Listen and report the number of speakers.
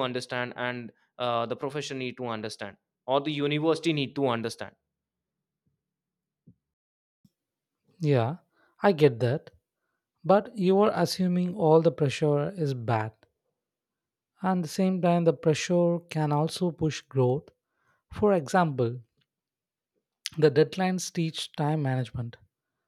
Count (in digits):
2